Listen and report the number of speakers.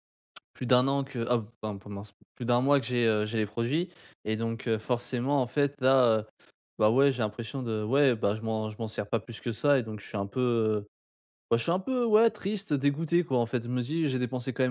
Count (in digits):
1